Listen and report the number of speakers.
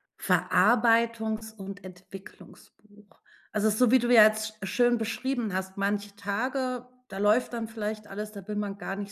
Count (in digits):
1